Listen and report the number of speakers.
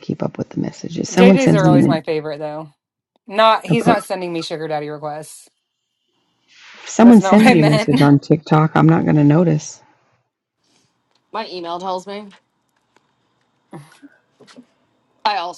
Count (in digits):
3